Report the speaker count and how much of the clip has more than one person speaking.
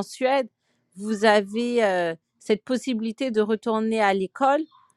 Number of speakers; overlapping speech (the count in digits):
1, no overlap